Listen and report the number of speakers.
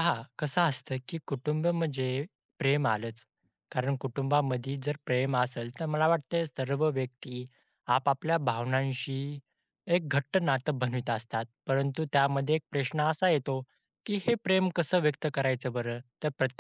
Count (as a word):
one